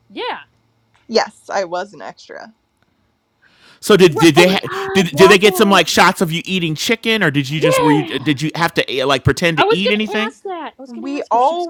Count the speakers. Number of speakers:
three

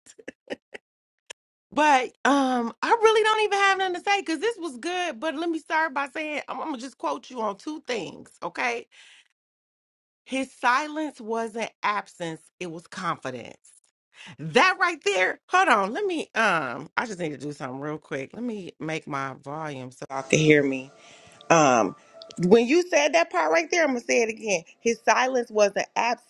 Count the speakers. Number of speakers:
one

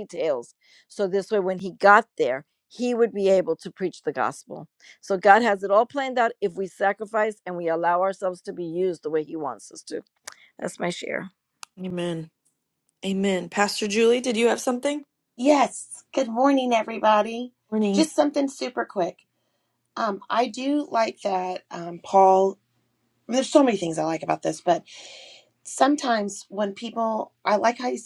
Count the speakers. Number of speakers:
three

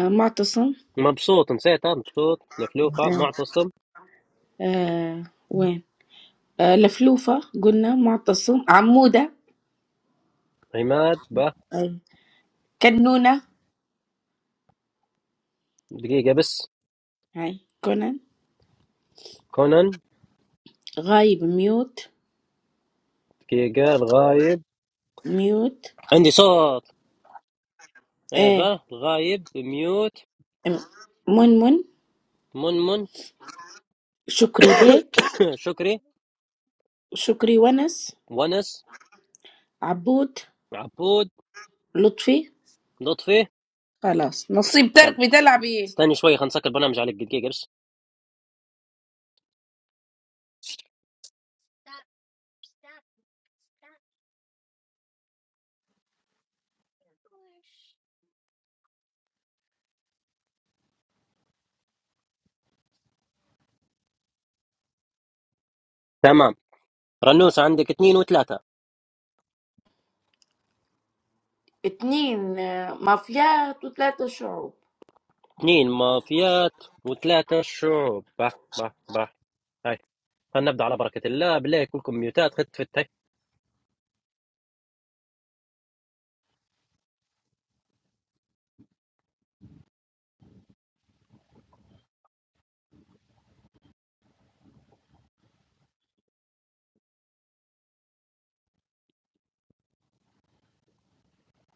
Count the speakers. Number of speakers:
two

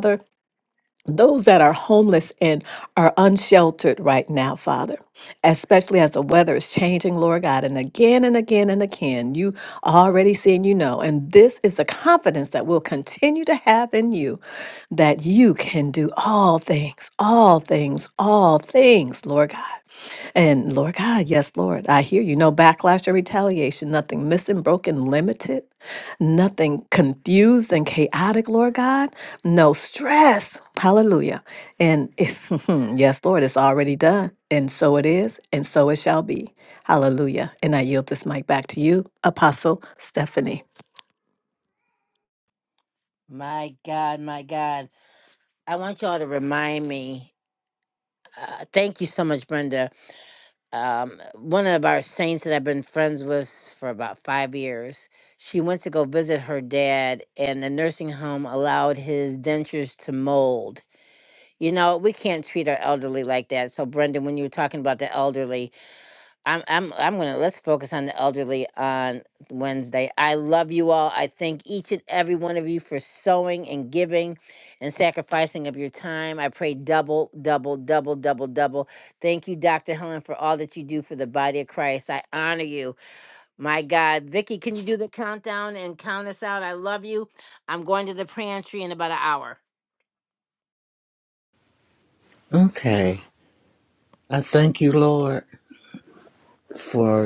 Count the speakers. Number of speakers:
three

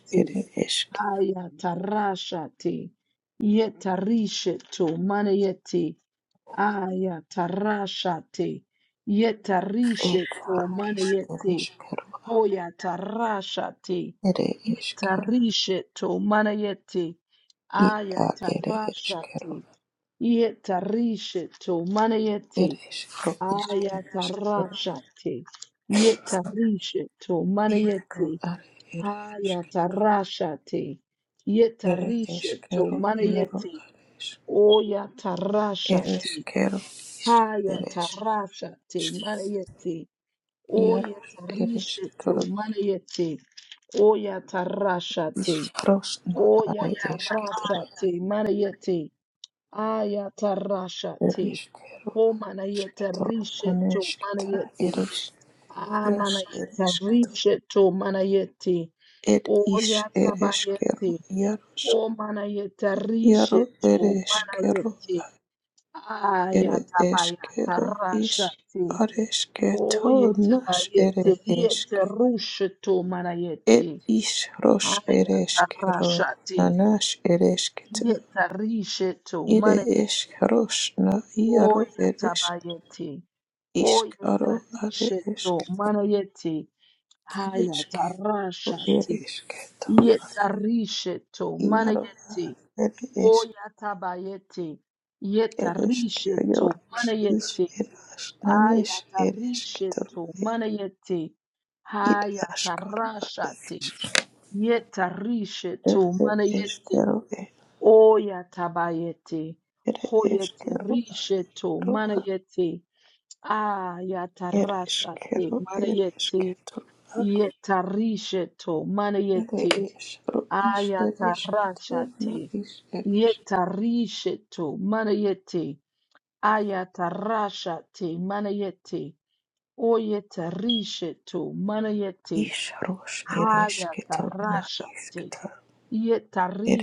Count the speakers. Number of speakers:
two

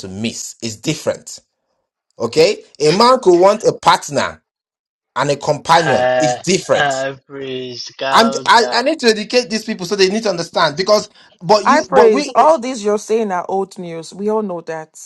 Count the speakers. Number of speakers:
three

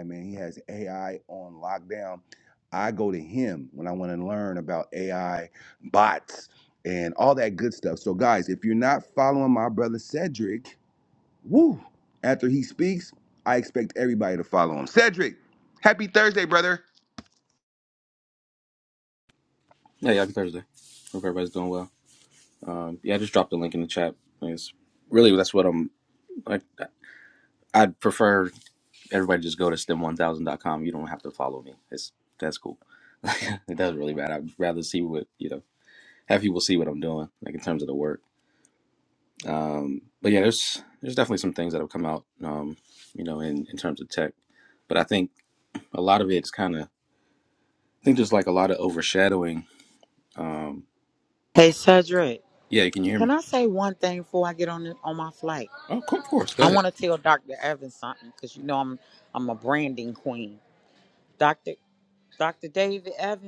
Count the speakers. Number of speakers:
three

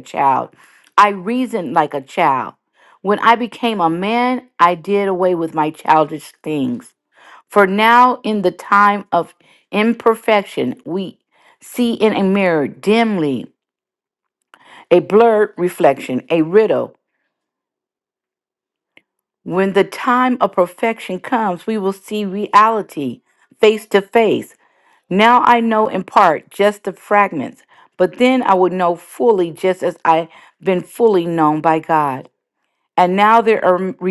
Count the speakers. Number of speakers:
one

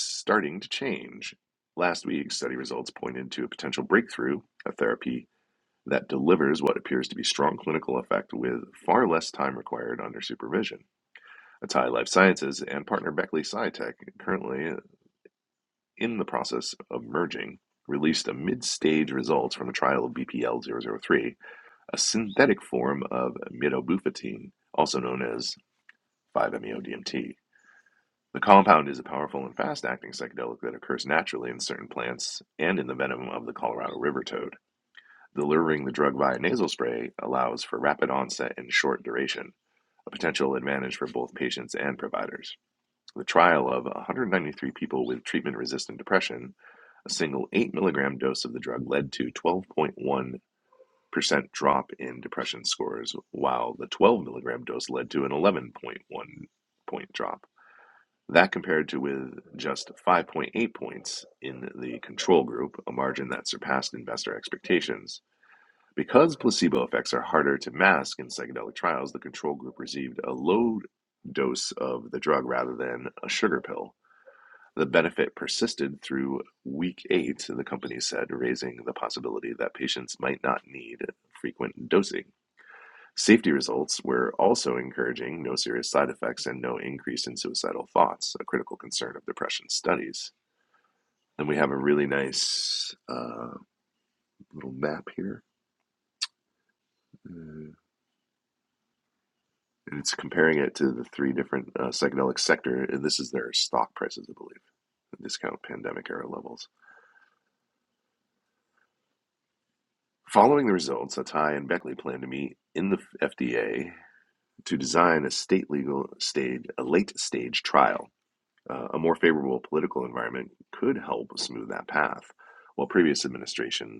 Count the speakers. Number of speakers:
one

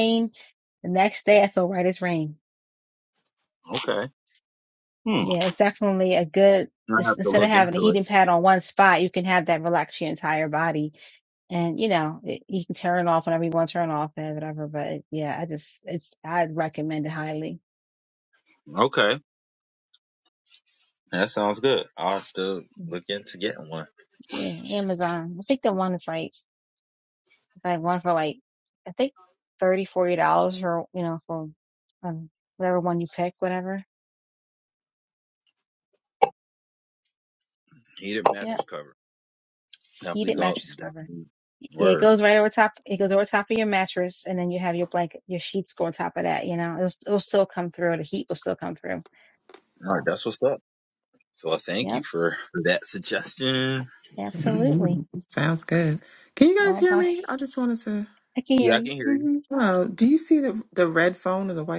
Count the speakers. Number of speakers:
three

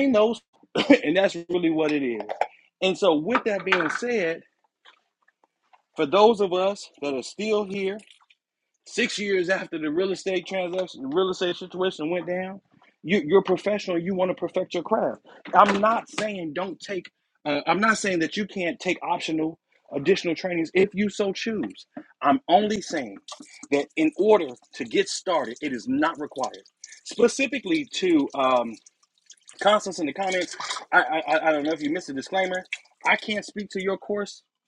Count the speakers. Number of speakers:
one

